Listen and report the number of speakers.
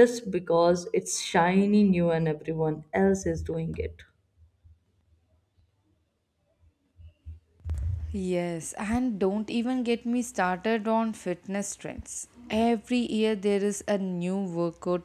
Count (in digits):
2